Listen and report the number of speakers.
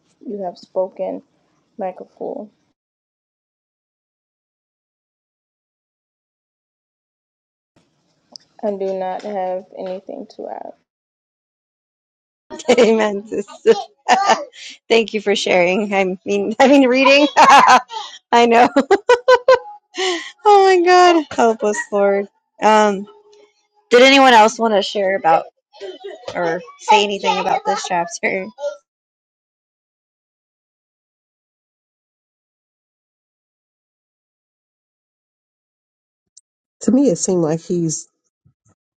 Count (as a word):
three